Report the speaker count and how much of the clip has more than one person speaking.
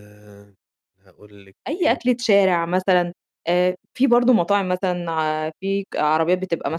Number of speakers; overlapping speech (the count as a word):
two, about 5%